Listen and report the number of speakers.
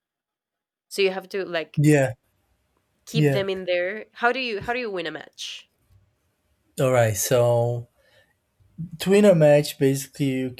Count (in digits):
2